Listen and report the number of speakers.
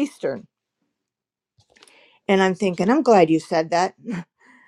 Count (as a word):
one